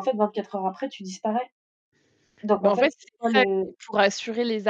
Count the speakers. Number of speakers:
2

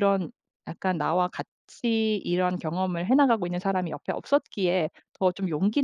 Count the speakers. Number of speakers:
1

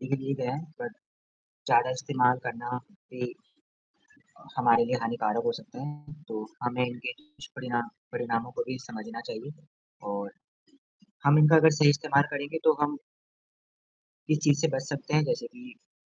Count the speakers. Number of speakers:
1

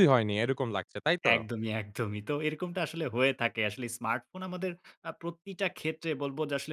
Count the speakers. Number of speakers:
2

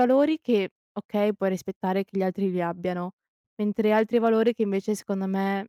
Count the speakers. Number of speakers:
1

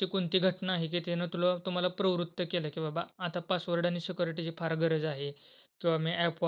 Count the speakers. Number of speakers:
1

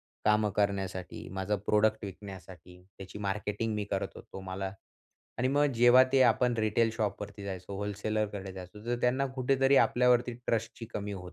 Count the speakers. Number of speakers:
1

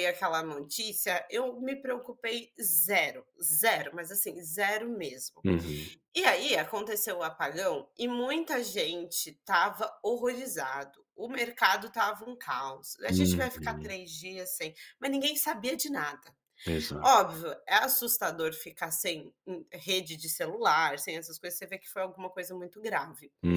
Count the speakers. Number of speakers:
2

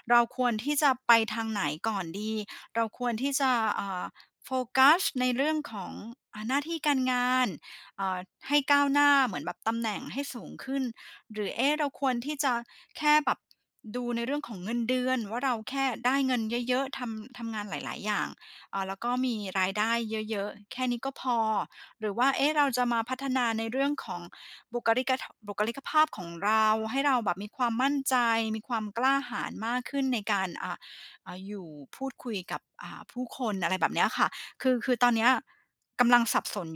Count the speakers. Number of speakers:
1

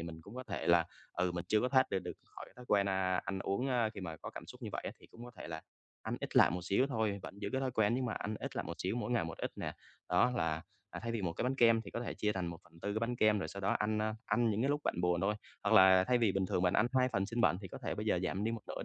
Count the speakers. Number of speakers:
1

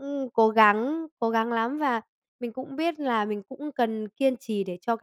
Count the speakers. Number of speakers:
1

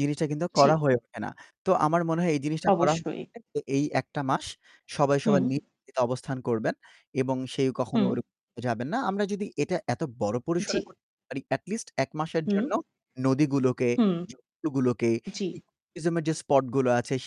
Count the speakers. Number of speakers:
2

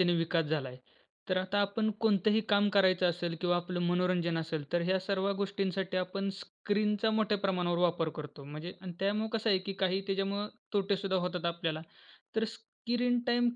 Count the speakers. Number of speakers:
1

